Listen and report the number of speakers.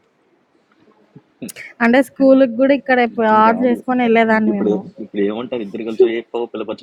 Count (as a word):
two